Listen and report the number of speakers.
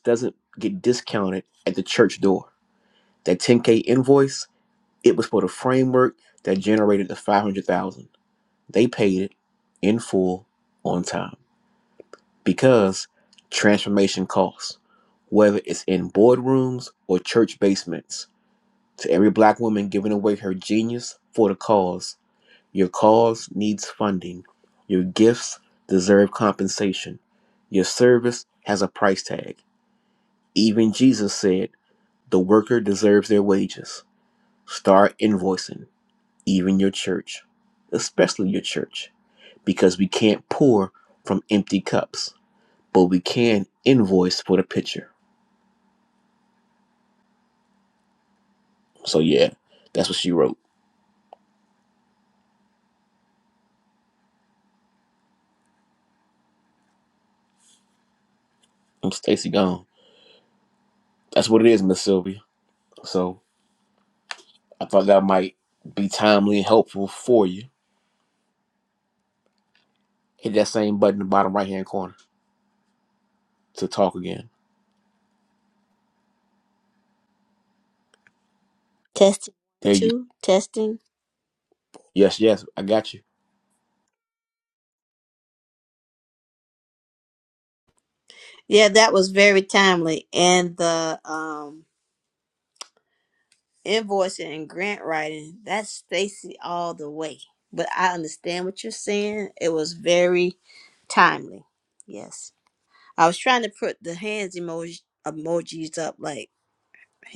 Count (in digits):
2